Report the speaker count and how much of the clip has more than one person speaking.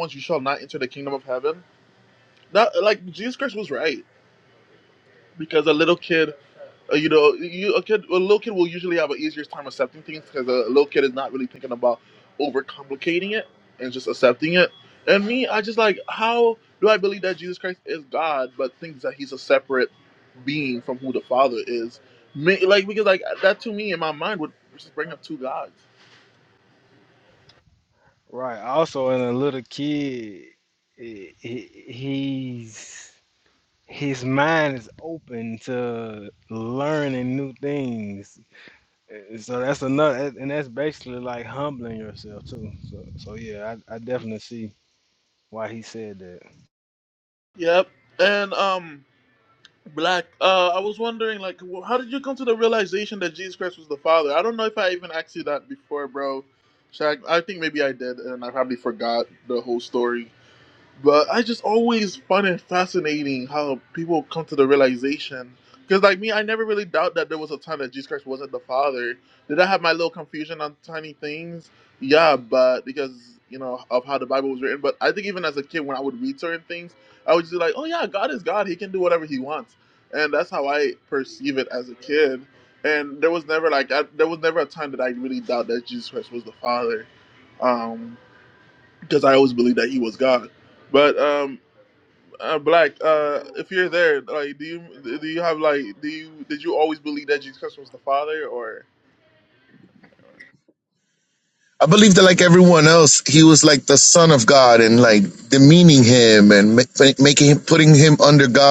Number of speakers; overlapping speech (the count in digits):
3, no overlap